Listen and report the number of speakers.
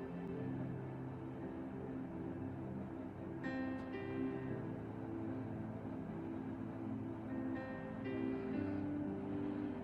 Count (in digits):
0